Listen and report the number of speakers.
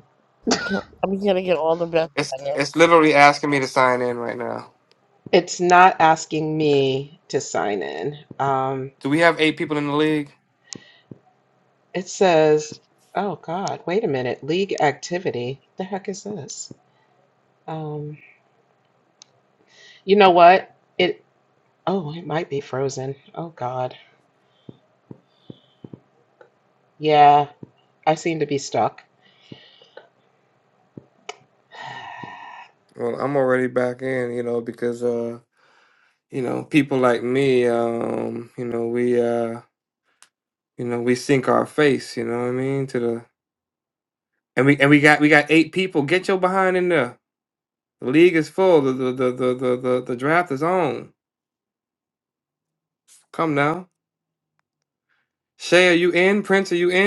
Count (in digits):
3